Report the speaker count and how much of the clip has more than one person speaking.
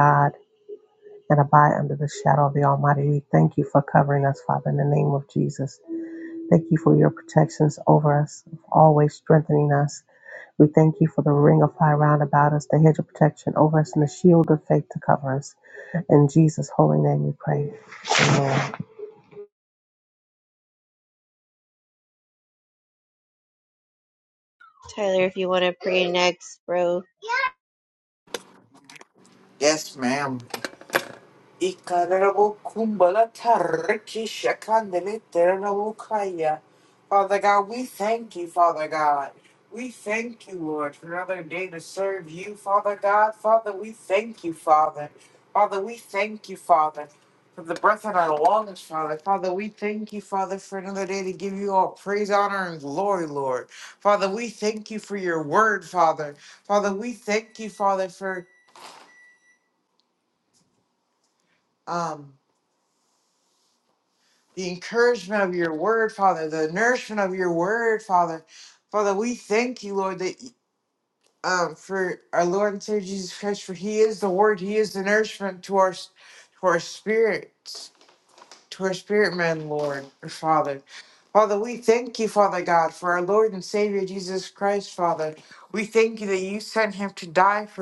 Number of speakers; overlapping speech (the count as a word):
three, no overlap